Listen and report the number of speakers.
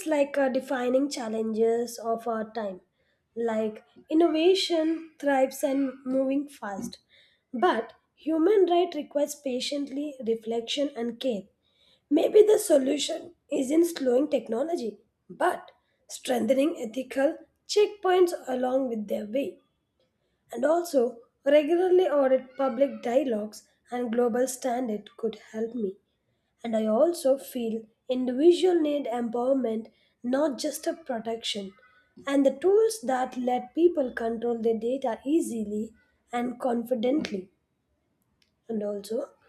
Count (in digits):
1